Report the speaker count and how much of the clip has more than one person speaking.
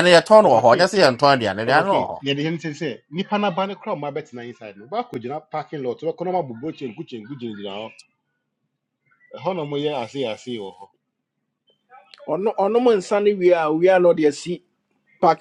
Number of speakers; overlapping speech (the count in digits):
3, about 6%